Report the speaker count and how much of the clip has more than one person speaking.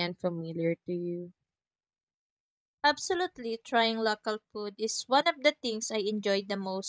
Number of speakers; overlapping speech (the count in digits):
2, no overlap